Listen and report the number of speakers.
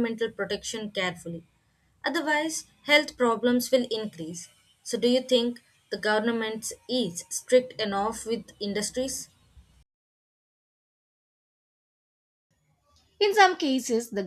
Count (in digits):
2